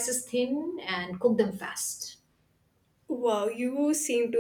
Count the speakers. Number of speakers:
2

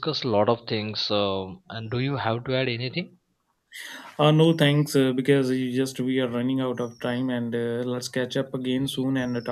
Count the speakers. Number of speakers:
2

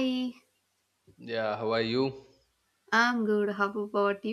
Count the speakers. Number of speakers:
2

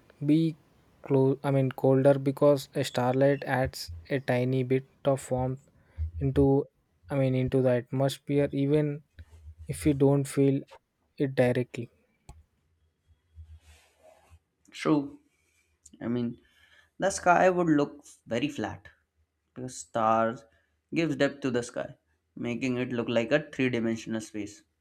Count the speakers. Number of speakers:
2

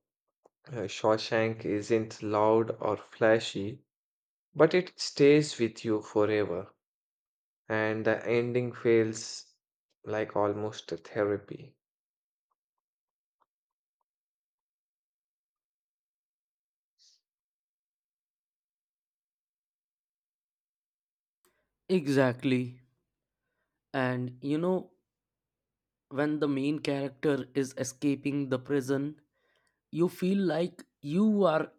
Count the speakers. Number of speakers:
2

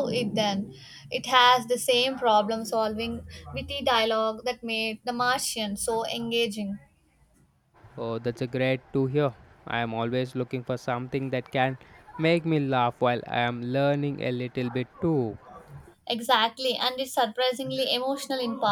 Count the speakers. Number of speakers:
2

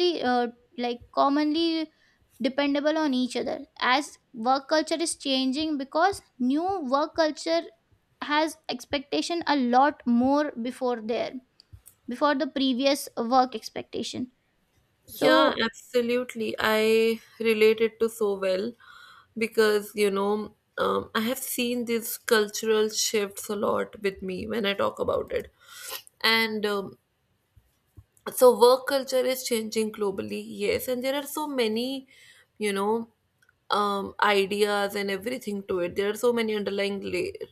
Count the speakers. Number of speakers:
2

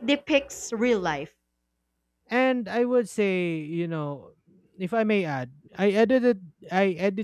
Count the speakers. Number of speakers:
2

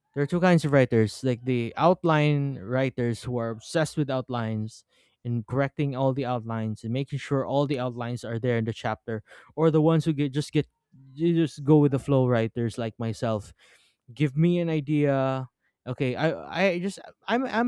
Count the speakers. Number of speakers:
1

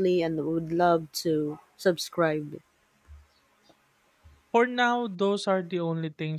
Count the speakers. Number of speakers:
2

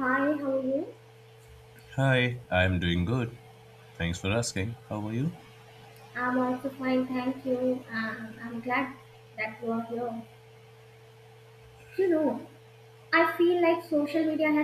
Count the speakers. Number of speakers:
2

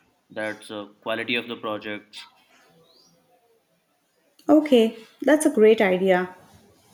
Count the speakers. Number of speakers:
2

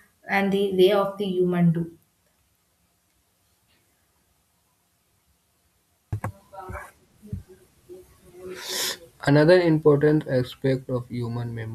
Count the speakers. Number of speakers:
2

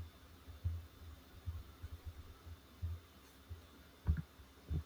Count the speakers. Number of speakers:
0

